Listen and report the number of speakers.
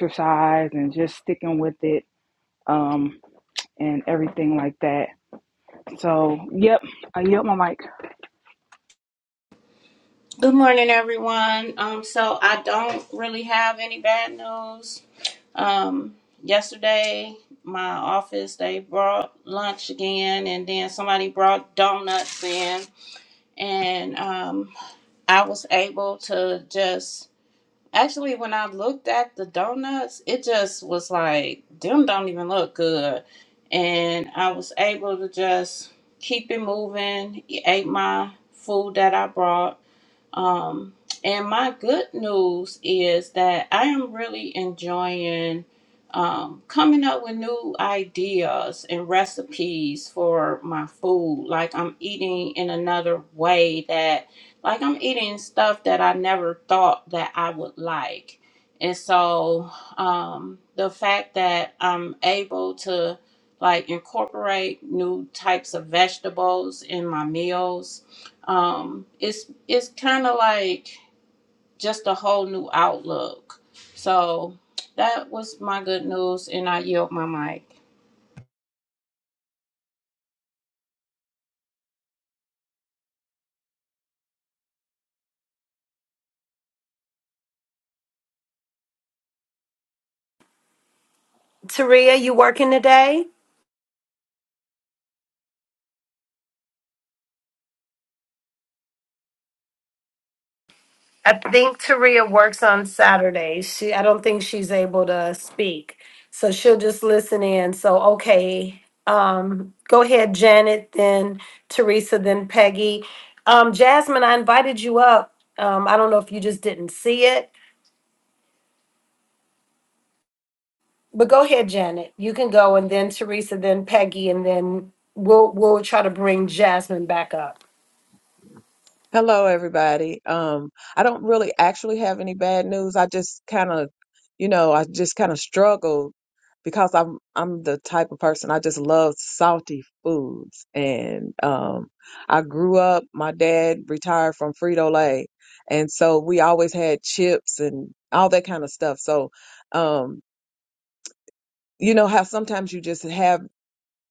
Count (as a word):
four